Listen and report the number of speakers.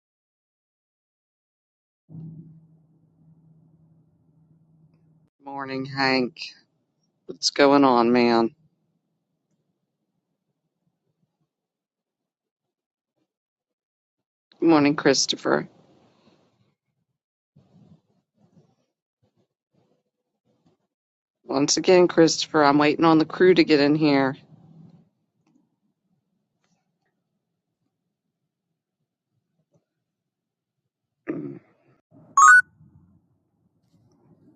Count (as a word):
one